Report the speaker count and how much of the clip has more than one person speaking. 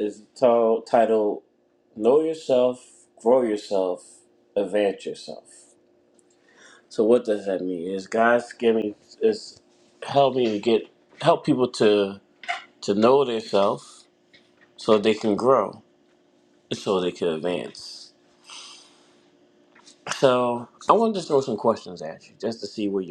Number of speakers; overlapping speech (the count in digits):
1, no overlap